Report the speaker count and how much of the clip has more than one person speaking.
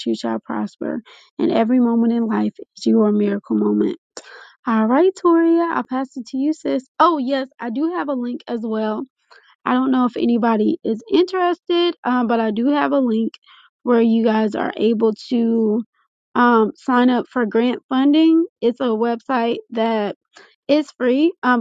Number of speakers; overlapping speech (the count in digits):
1, no overlap